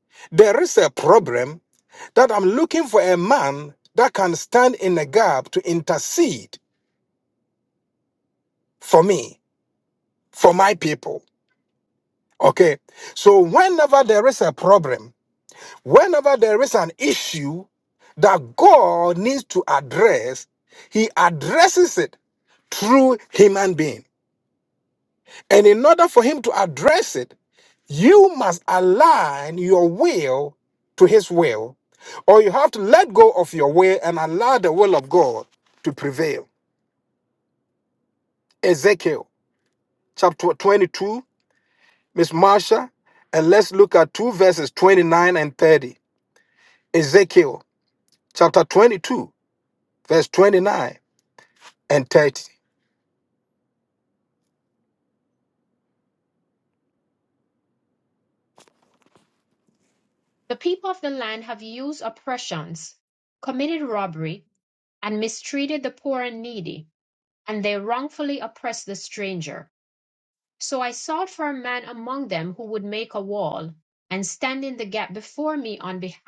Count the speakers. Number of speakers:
2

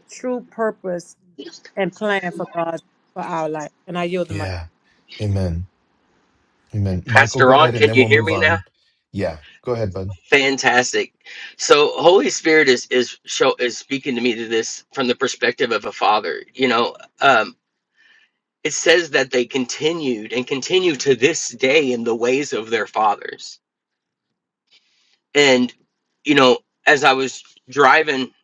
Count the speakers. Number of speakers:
3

